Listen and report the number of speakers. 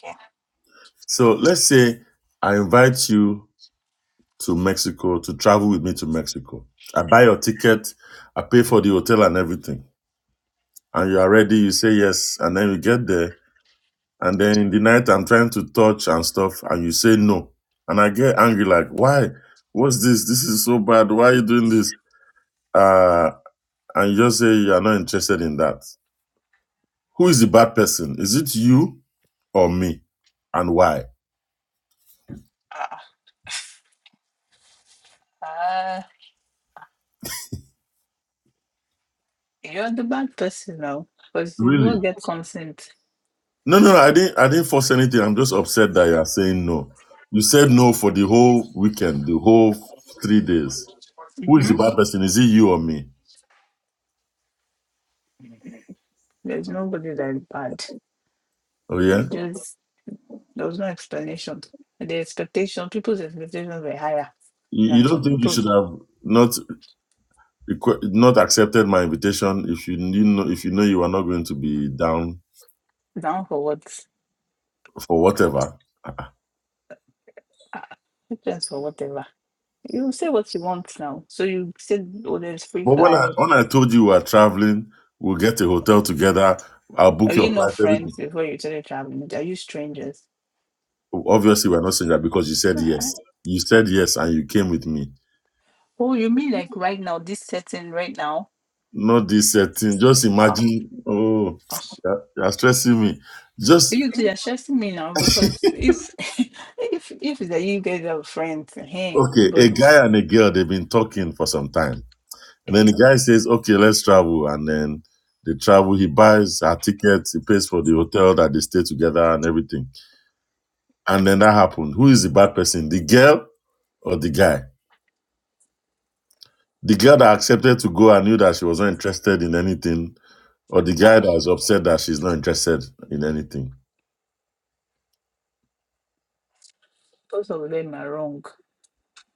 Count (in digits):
2